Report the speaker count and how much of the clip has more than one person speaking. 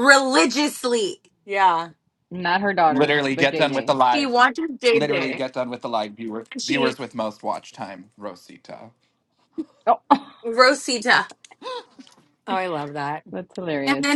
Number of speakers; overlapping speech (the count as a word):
four, about 16%